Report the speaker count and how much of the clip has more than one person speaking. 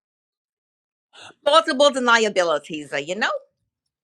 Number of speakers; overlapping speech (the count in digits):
1, no overlap